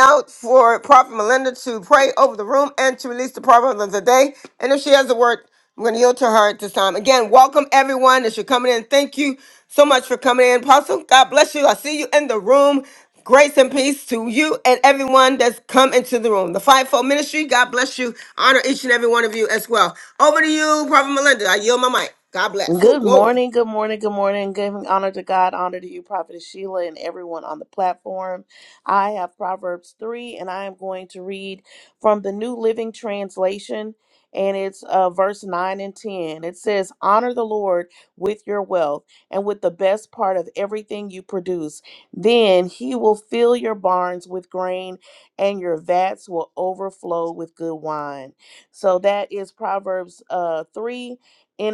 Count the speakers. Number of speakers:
2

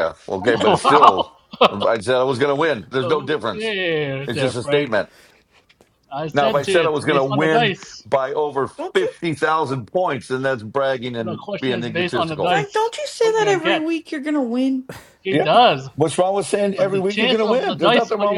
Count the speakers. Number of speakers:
3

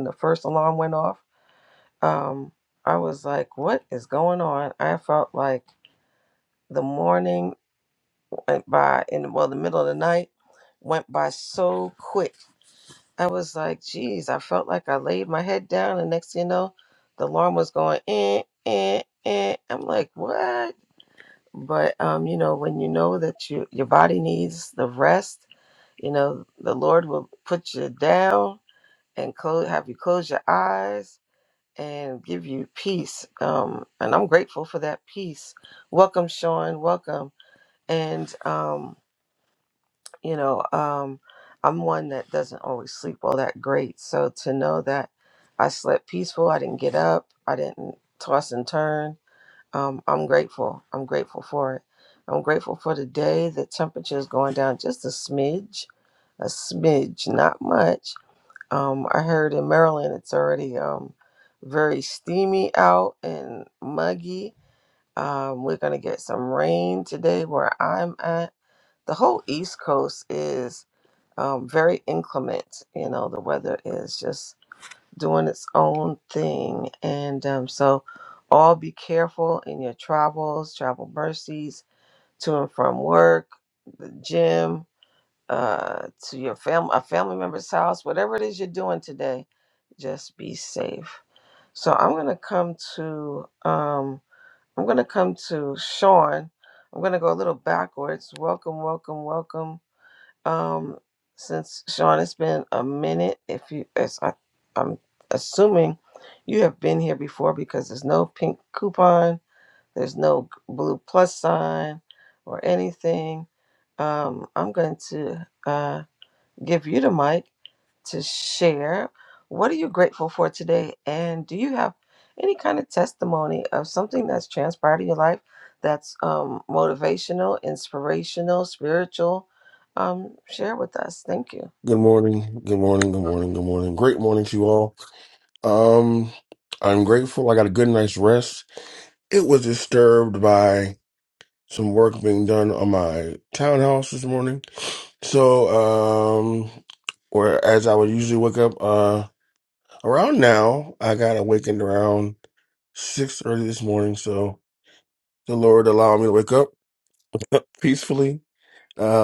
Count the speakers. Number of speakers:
2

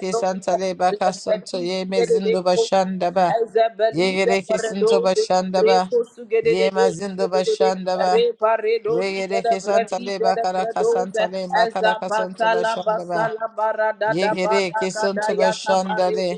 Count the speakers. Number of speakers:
2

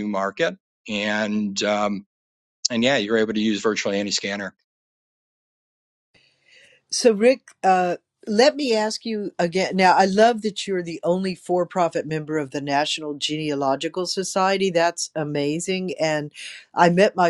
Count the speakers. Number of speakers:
2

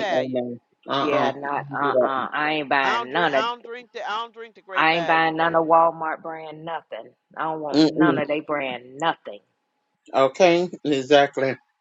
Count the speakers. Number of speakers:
3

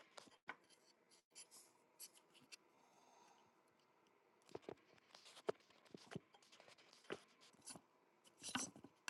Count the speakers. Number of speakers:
0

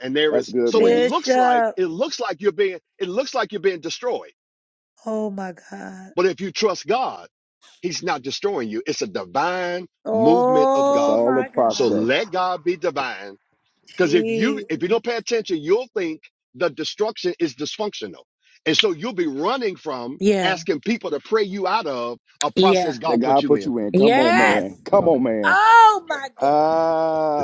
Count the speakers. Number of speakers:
3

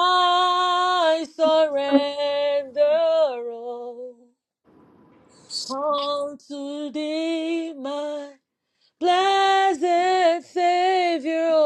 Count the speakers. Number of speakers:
1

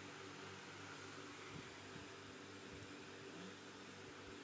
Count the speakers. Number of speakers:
0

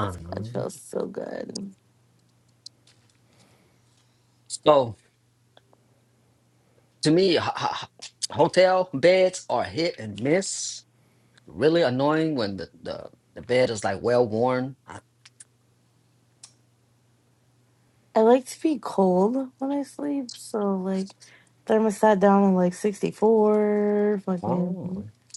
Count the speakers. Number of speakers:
2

